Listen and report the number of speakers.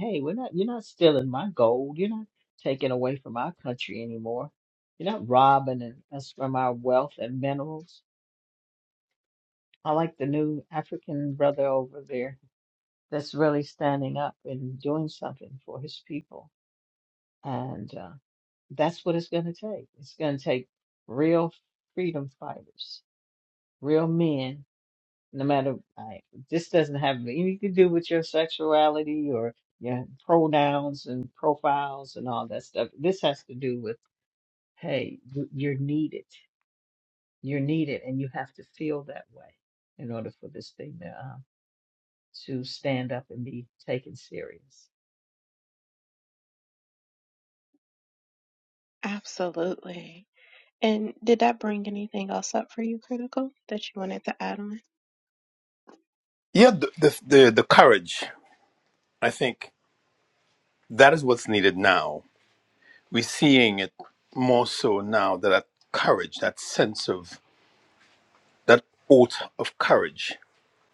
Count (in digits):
3